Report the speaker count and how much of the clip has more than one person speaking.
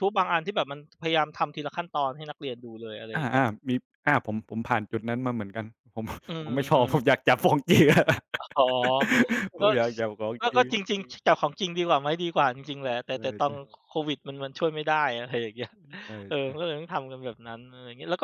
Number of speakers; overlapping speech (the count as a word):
two, about 8%